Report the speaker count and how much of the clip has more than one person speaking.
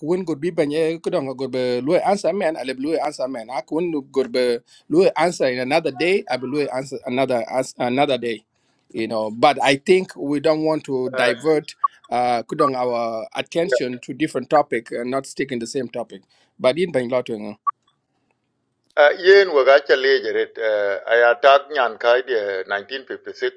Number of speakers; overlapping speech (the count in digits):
2, no overlap